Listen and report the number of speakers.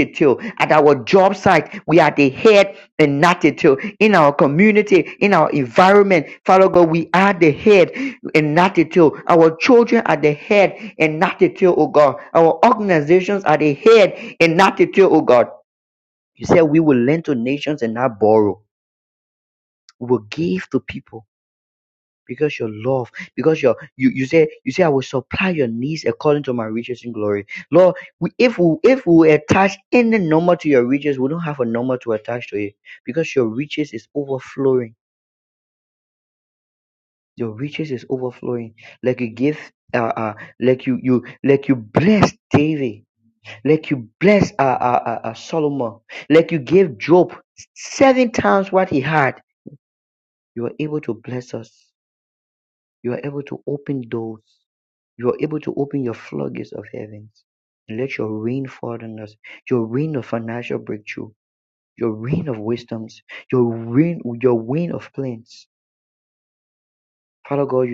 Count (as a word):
one